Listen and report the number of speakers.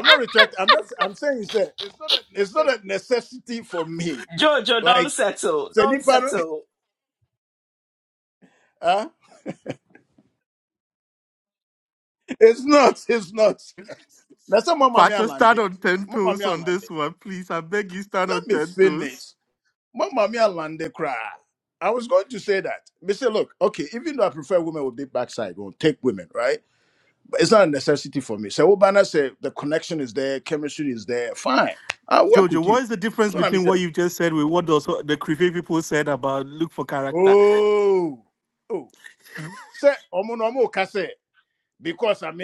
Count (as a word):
three